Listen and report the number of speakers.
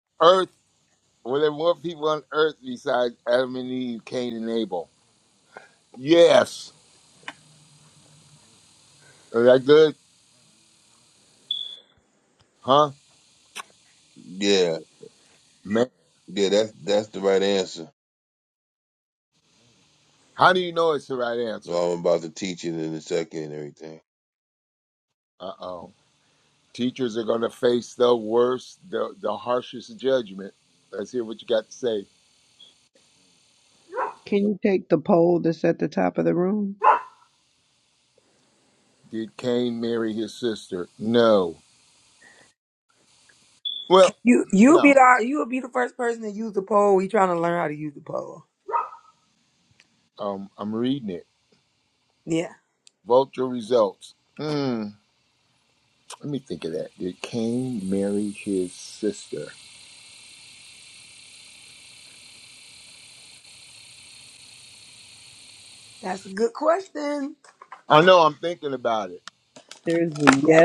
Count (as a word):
four